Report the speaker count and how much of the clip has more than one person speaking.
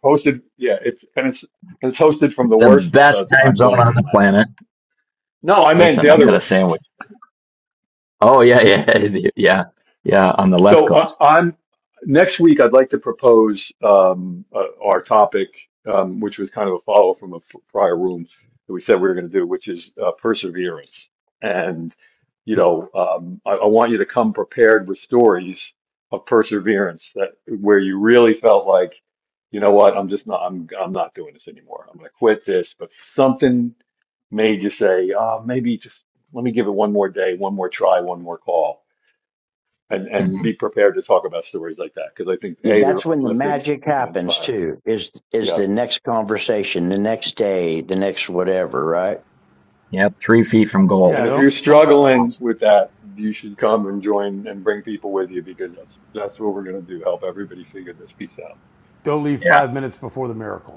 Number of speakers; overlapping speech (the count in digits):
4, about 10%